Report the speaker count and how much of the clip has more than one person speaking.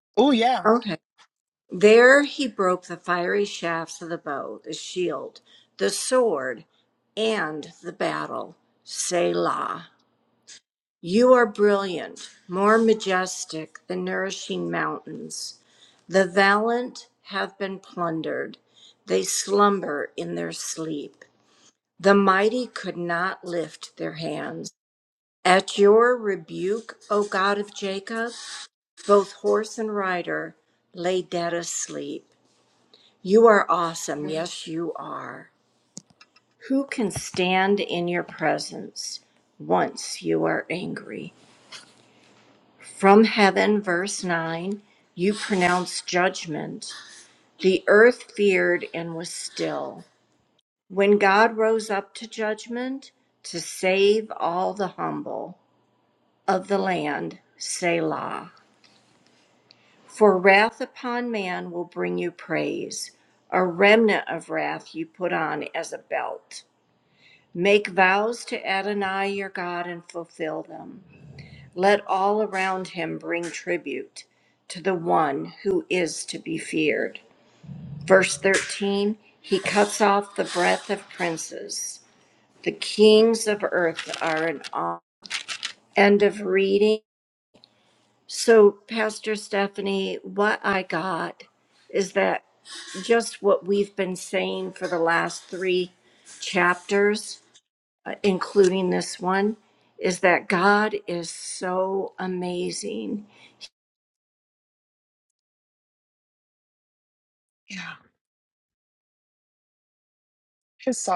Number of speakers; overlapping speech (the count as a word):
two, under 1%